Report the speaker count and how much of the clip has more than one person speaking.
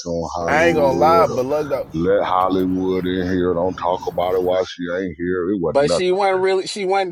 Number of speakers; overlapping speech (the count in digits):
3, about 24%